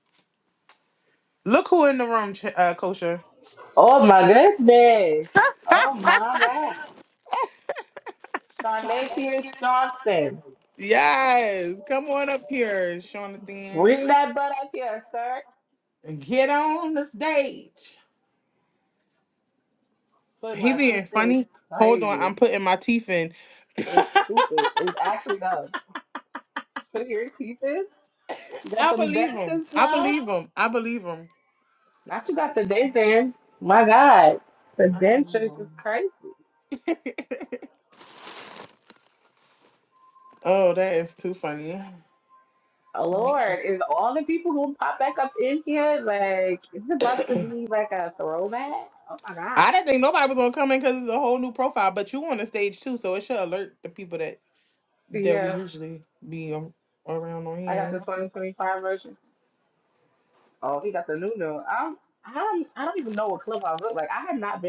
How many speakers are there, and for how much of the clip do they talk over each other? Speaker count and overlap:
2, about 7%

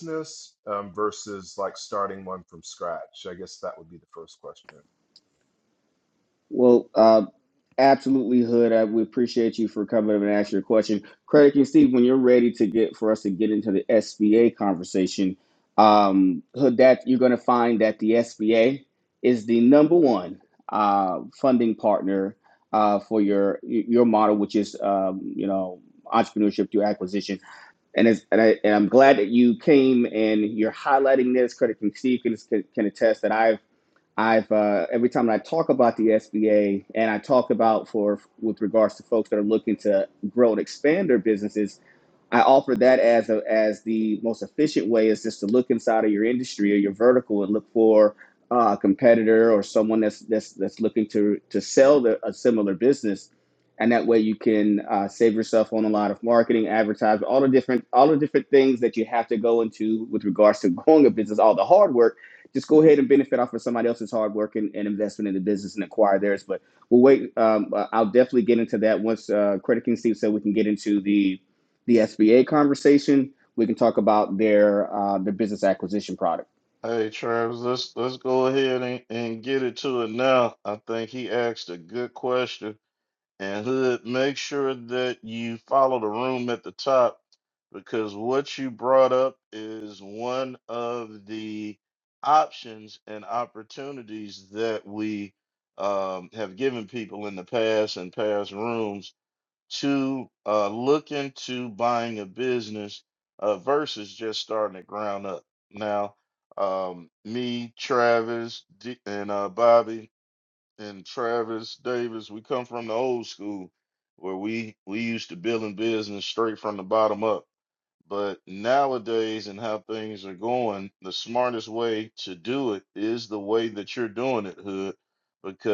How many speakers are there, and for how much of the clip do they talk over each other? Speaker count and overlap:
3, no overlap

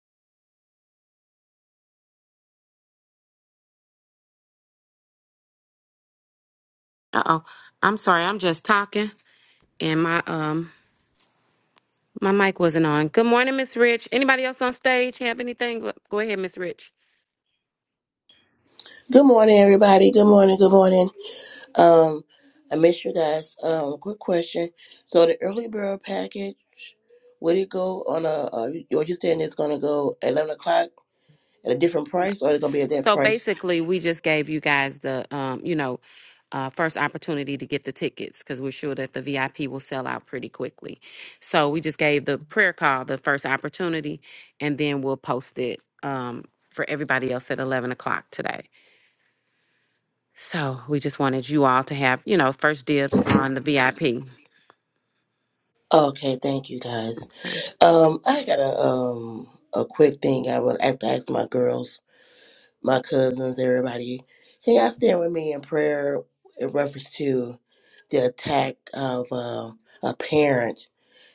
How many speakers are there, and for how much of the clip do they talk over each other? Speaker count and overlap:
2, about 1%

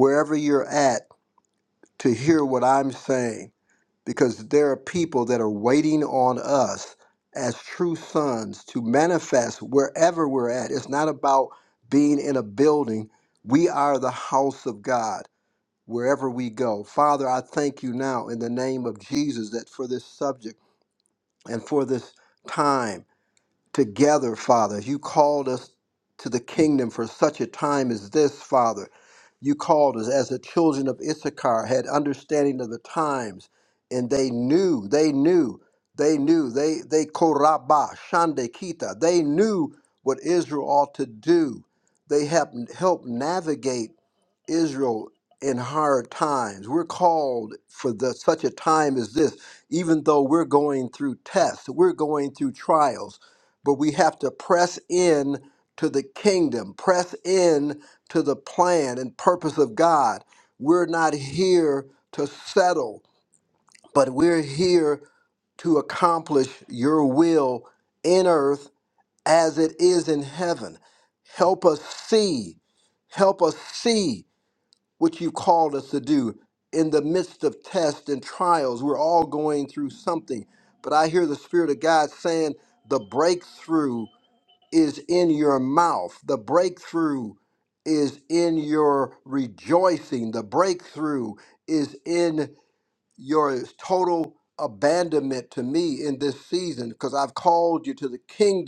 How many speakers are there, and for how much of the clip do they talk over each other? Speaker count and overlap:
1, no overlap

